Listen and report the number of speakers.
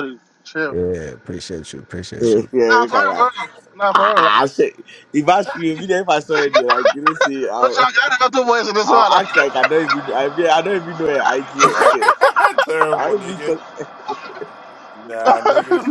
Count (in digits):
4